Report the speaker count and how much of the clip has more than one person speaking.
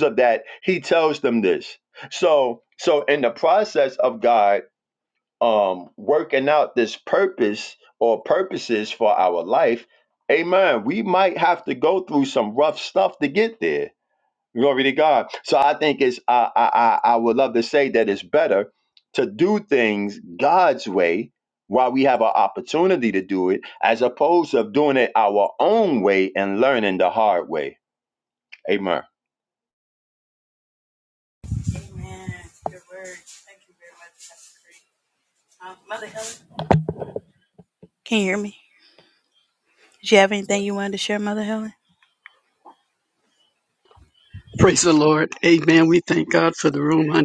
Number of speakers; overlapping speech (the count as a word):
three, no overlap